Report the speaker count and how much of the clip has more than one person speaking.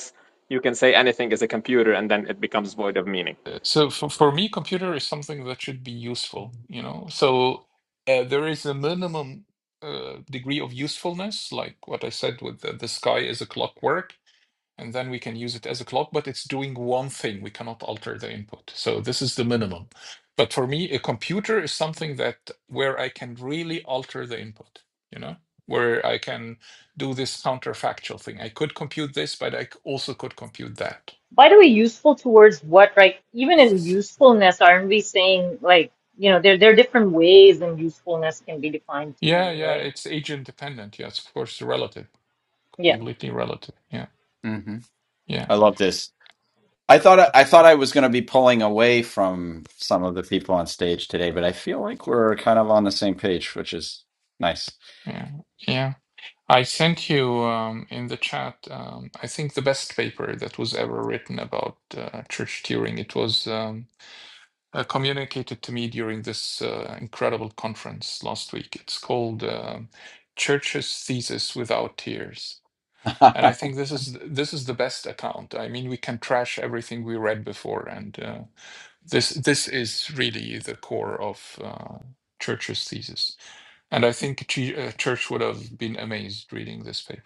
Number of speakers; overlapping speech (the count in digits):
4, about 1%